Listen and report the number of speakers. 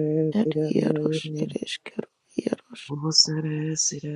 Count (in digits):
2